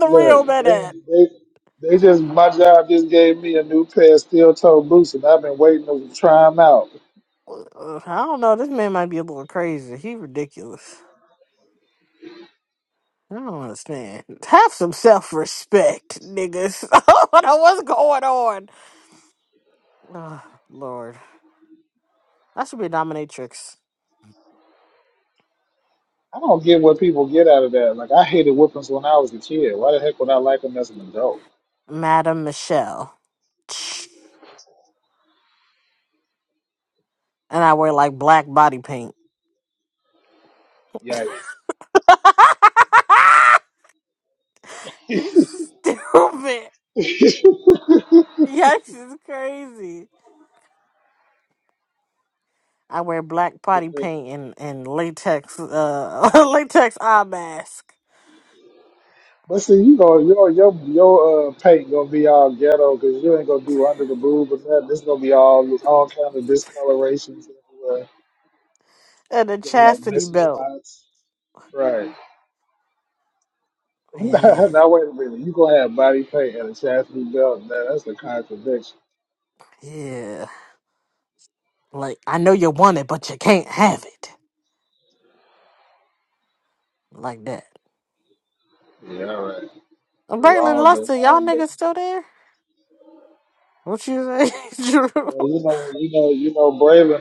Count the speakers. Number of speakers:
2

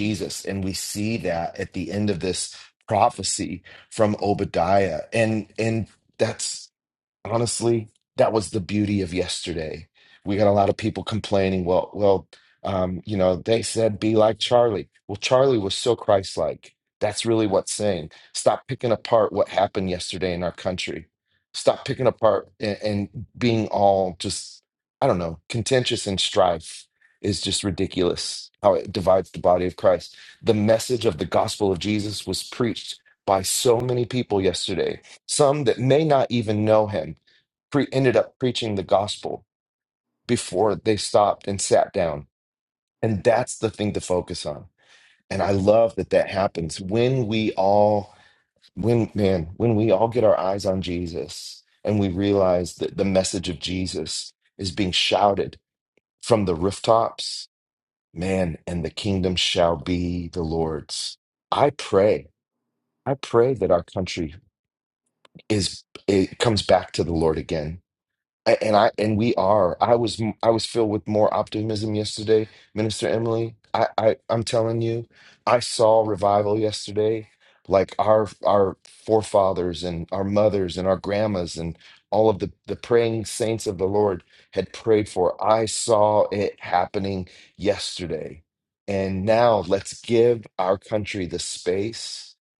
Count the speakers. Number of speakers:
1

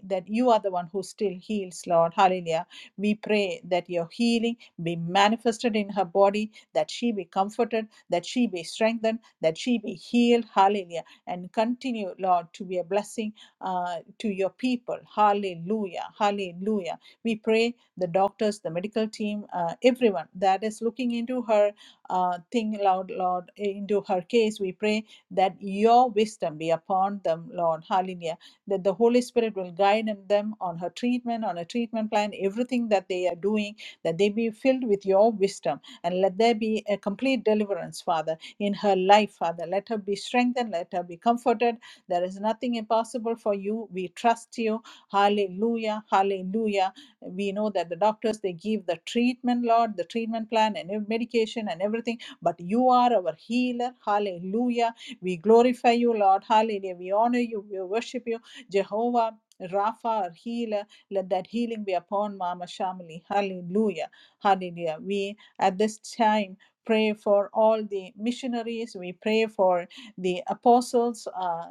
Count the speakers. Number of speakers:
1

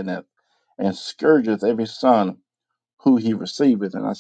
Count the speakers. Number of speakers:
1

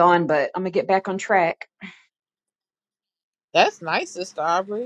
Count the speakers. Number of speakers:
2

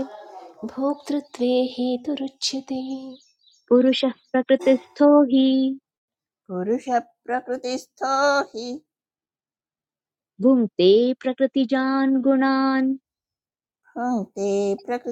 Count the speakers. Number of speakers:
3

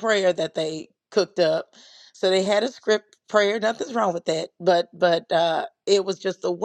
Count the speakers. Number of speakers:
1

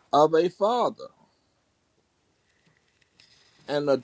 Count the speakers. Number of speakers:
1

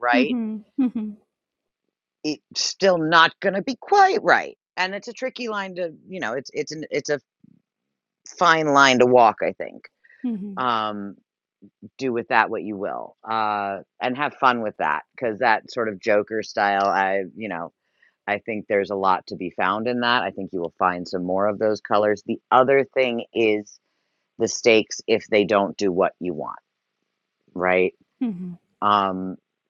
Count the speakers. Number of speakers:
2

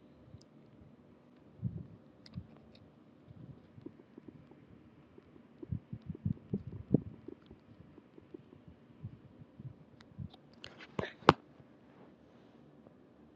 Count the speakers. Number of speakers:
0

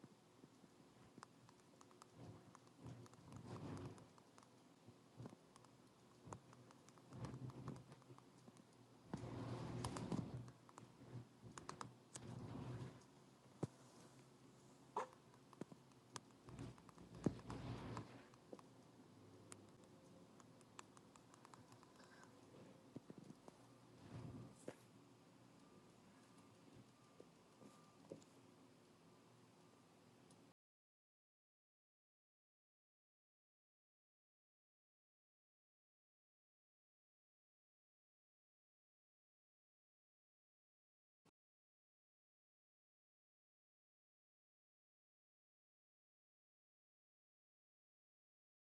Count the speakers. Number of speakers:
0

